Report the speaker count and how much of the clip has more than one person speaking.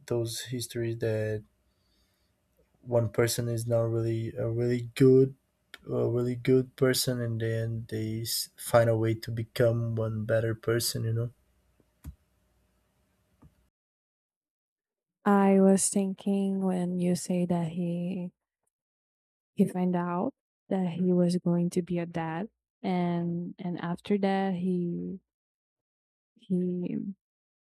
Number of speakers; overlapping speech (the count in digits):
2, no overlap